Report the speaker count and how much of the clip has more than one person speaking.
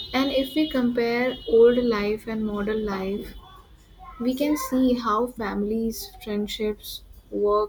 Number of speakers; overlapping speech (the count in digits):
1, no overlap